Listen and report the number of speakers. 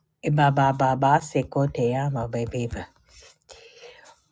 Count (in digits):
1